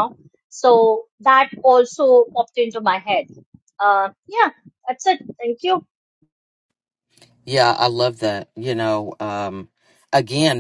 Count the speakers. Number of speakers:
two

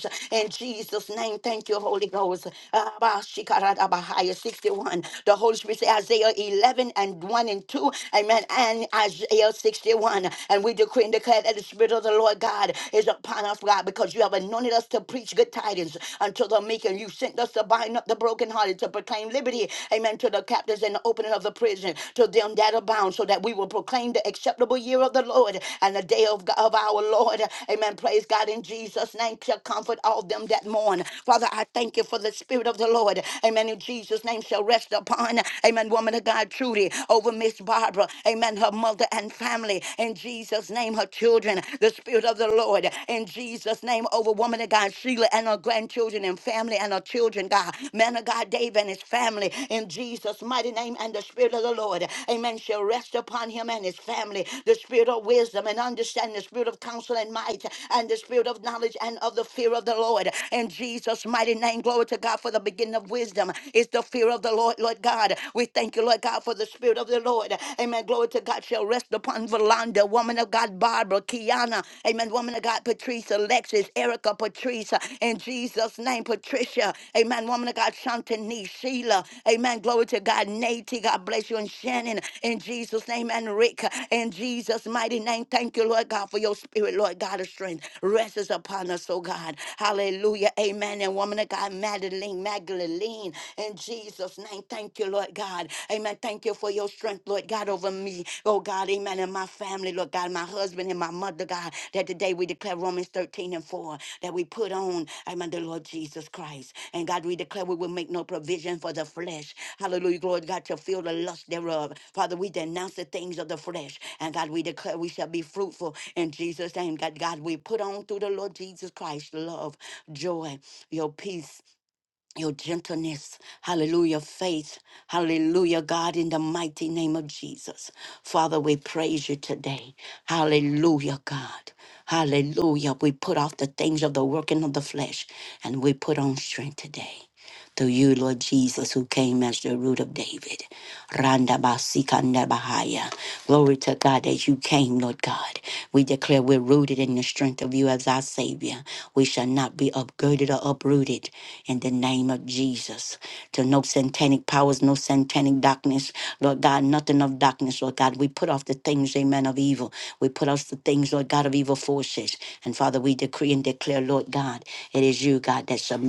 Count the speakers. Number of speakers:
one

